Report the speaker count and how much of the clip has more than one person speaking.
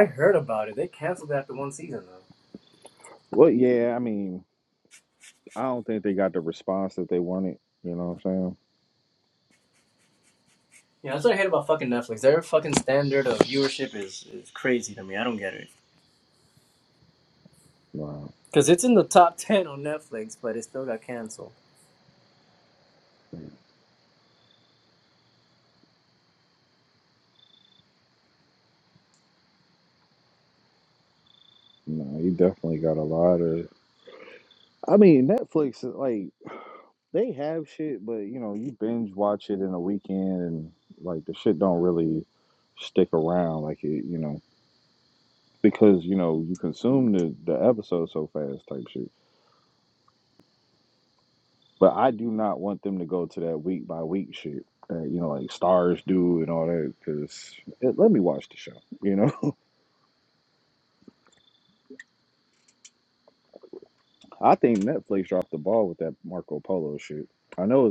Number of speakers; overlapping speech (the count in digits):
2, under 1%